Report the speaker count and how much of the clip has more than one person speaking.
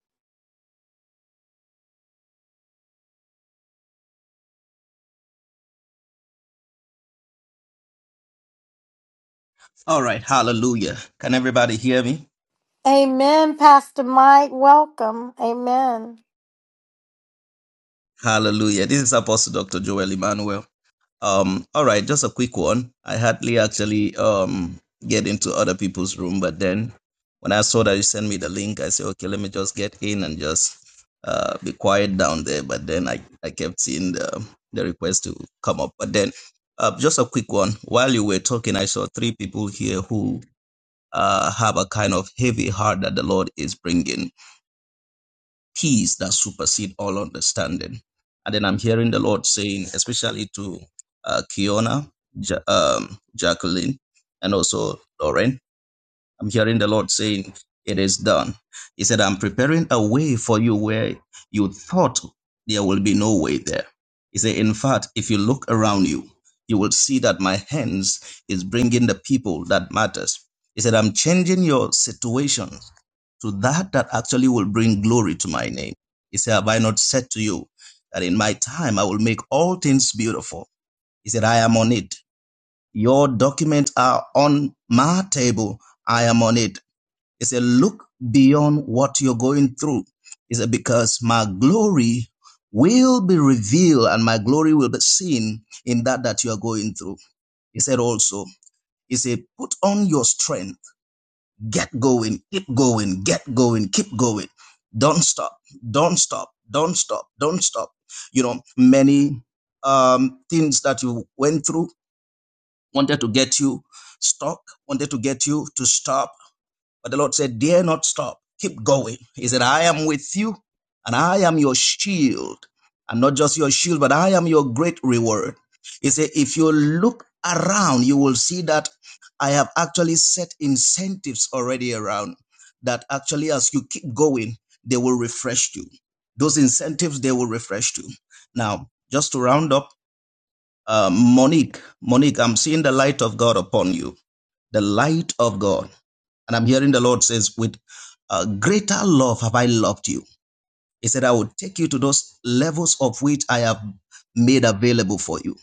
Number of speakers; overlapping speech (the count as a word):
two, no overlap